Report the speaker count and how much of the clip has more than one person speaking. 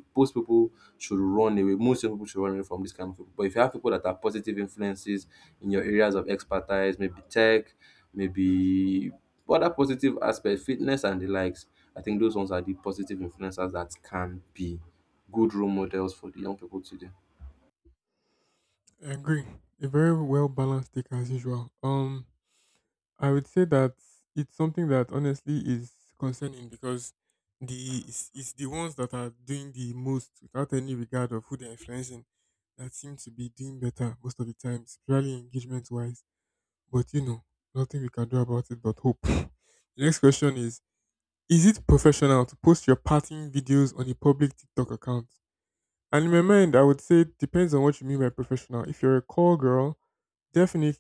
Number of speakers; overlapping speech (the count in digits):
2, no overlap